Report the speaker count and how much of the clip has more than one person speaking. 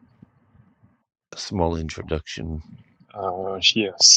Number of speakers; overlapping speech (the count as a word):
two, no overlap